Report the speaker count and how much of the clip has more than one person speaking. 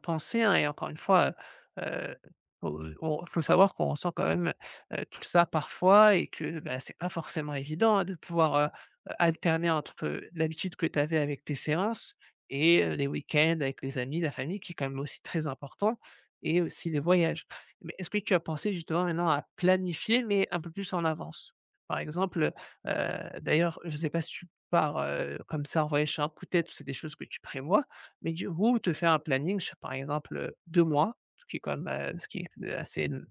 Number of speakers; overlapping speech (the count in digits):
1, no overlap